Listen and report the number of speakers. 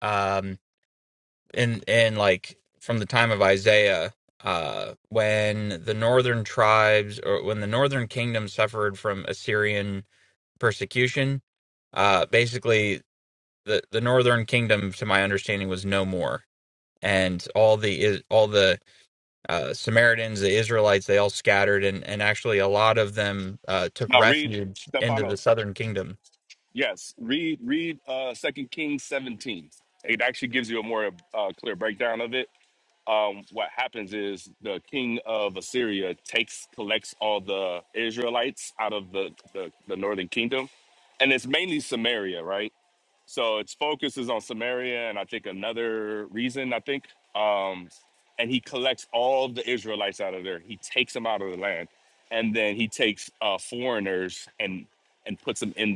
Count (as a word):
two